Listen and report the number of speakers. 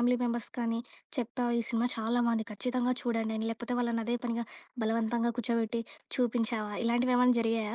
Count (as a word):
one